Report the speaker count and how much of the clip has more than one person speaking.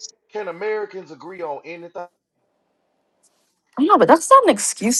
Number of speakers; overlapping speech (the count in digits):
2, no overlap